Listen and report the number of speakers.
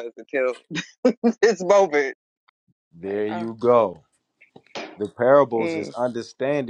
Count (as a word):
two